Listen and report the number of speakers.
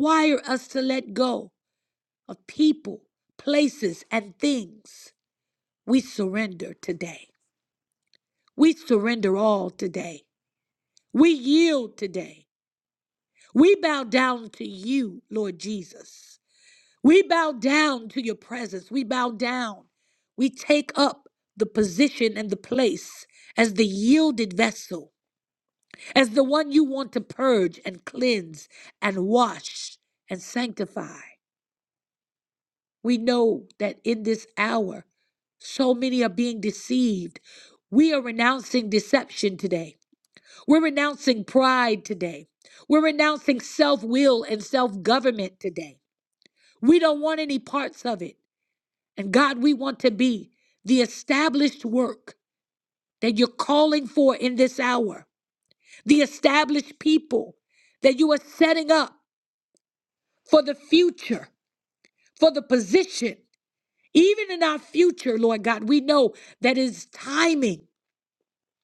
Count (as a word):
one